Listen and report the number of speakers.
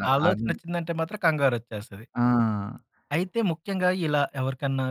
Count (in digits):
2